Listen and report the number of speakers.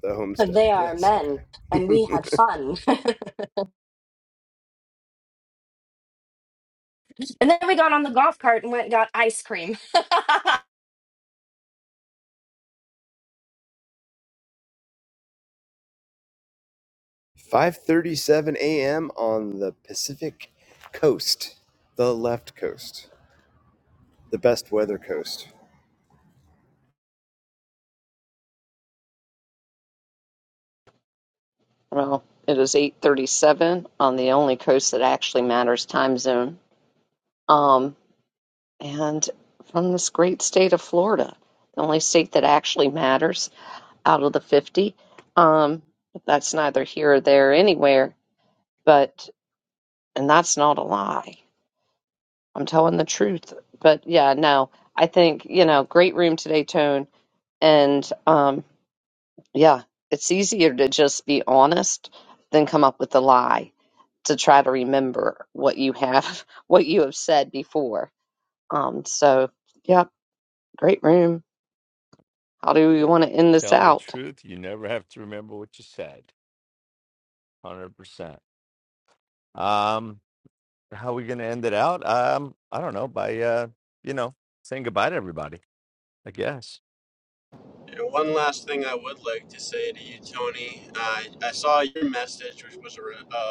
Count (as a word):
five